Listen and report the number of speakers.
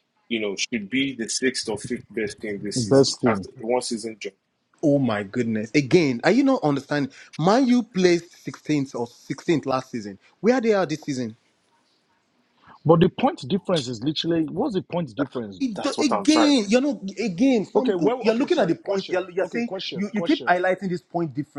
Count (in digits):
3